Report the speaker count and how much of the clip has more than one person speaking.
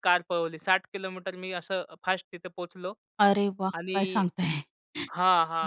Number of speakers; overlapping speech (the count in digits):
2, about 10%